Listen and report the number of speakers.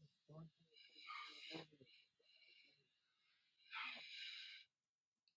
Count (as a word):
zero